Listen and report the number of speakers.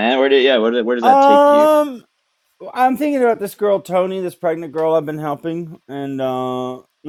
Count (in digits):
2